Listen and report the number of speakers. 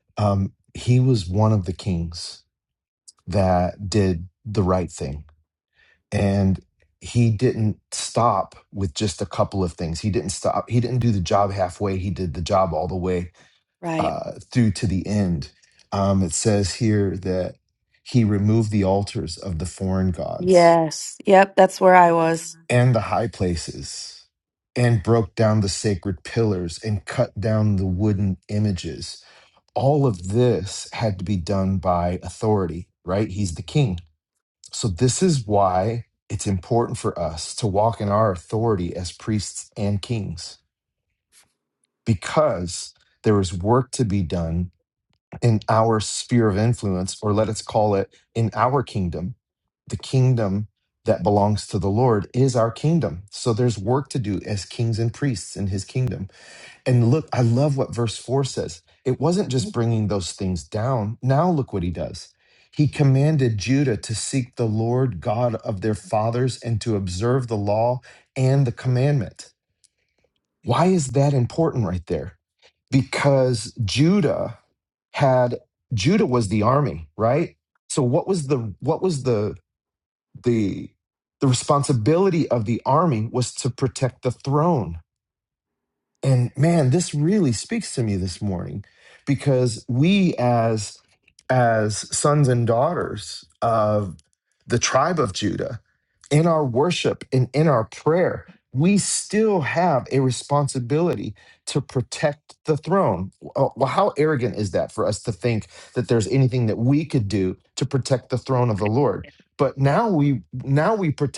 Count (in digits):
2